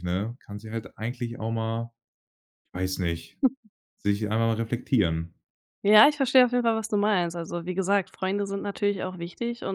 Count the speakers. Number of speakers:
2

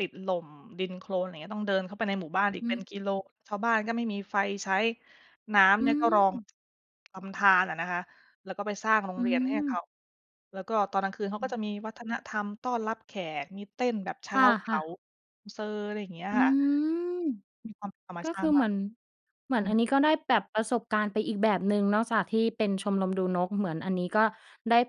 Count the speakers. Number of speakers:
2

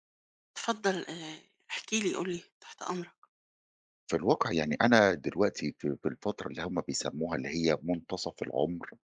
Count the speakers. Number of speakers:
2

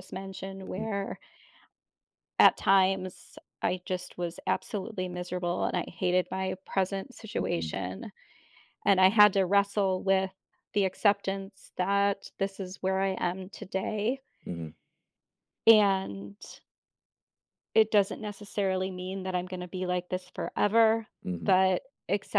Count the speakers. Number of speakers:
2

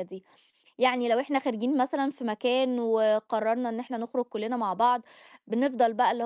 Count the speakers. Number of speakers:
1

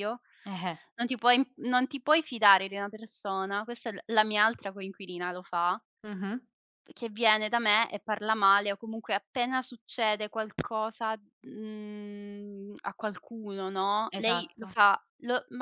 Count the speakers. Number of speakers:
2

